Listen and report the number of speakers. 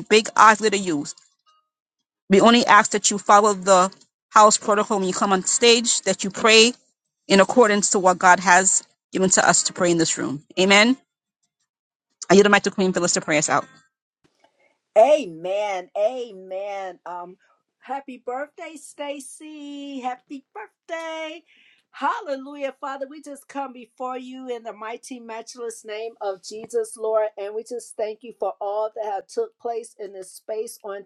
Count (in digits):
2